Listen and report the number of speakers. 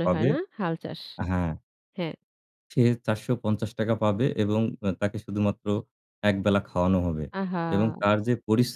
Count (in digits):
2